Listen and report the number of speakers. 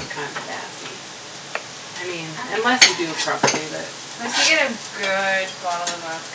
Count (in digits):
2